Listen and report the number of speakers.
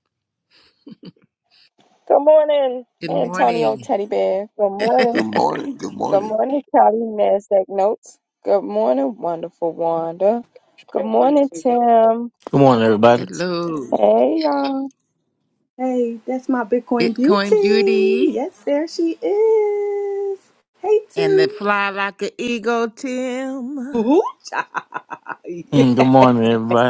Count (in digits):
5